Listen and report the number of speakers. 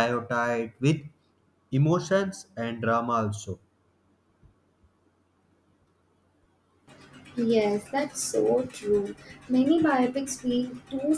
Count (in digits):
2